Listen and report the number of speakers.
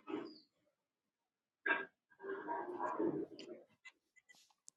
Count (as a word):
zero